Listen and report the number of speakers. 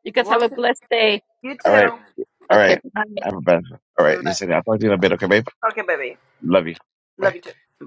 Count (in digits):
3